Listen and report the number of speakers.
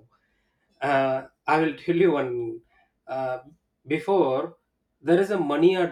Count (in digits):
1